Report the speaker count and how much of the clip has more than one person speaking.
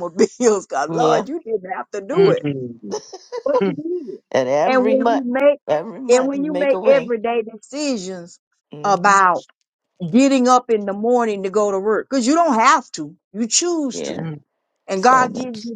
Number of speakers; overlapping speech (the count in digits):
3, about 23%